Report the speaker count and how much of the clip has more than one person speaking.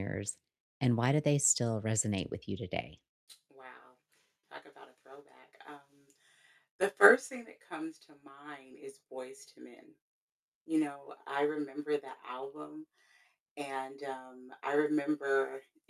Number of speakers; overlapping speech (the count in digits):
2, no overlap